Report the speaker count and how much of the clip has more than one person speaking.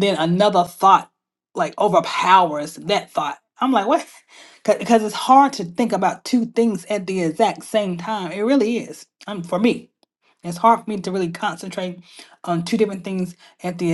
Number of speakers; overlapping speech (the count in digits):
1, no overlap